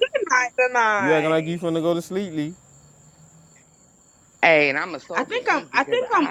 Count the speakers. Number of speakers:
3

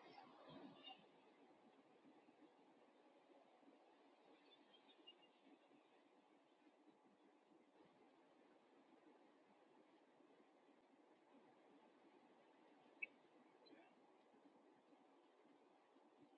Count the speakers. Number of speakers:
0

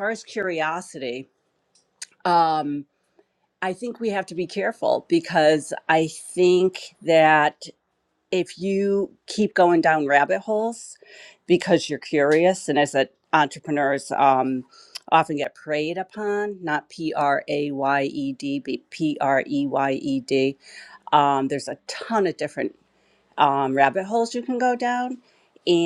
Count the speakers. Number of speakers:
1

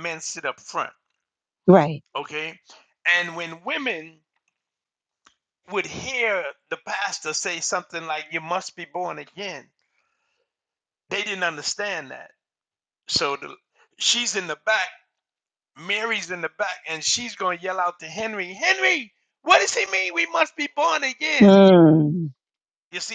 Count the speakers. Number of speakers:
2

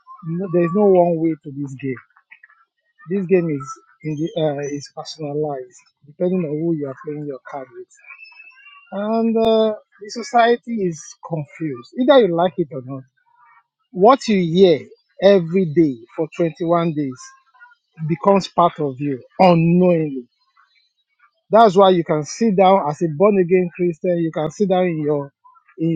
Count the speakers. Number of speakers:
1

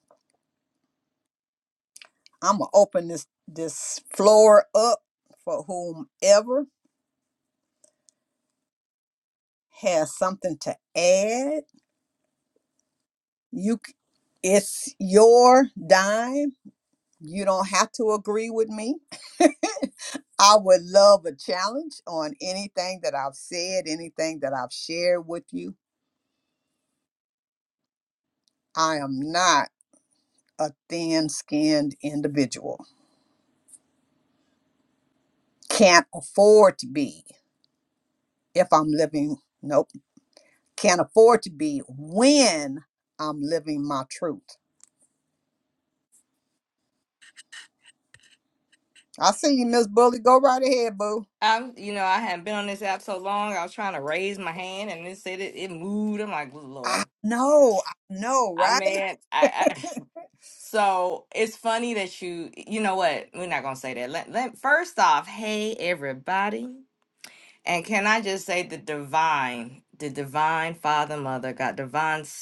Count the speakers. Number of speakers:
2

